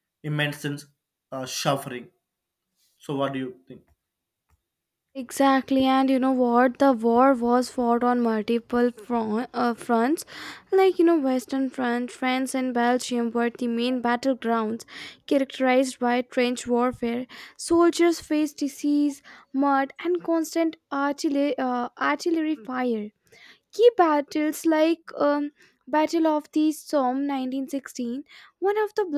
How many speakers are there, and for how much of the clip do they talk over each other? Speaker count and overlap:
two, no overlap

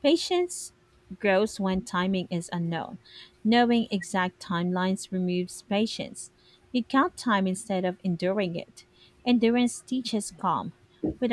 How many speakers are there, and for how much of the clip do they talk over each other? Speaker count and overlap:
one, no overlap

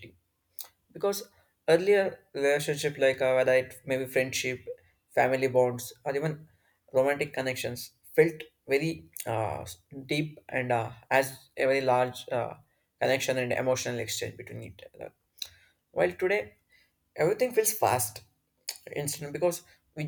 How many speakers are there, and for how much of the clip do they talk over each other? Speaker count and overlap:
one, no overlap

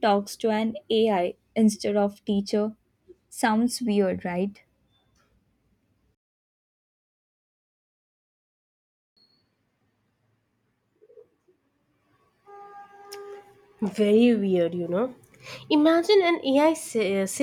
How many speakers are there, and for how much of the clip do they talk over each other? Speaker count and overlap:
two, no overlap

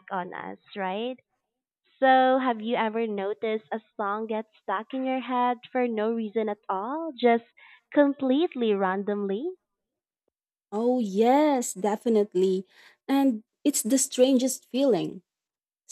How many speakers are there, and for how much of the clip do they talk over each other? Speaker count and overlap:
two, no overlap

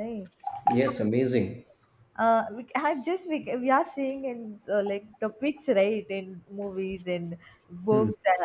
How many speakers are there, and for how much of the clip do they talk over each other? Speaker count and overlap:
two, about 5%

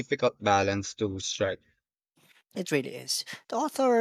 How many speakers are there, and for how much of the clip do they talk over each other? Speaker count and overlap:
two, no overlap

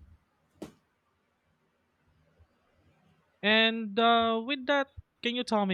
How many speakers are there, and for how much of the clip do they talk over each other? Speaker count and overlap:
one, no overlap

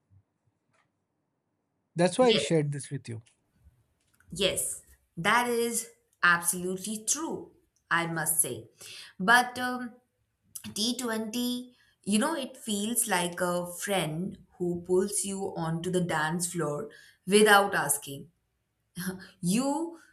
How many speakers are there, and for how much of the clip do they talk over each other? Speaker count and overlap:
two, about 1%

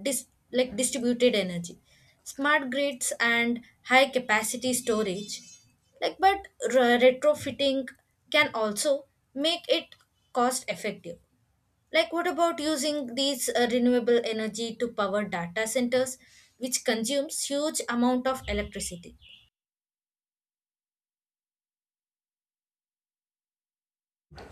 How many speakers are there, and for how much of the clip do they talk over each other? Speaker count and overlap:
one, no overlap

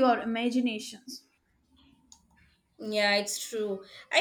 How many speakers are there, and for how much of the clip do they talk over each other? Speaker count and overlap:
two, no overlap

